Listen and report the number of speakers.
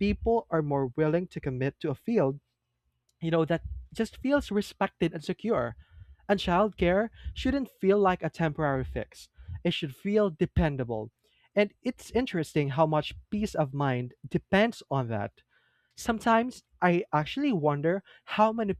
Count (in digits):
1